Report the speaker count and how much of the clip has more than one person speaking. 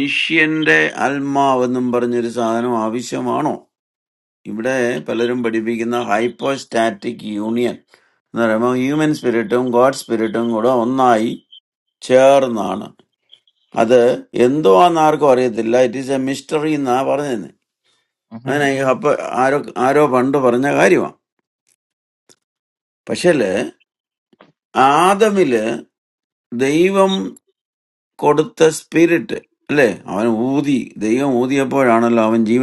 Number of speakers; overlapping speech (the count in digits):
1, no overlap